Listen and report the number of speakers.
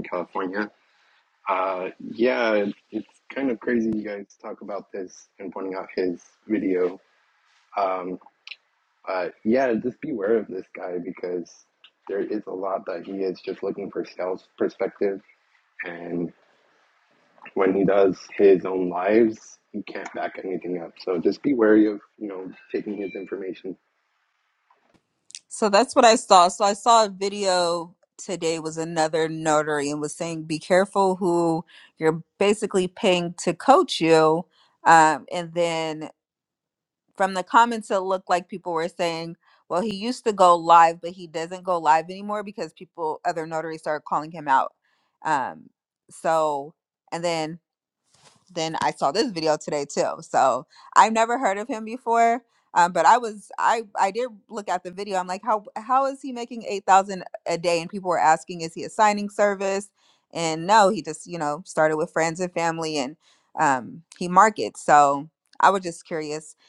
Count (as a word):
two